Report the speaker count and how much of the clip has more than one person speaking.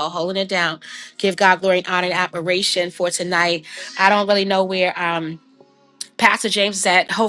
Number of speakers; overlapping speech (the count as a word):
one, no overlap